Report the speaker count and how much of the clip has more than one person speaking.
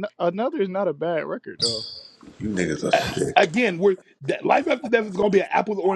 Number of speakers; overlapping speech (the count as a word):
three, about 10%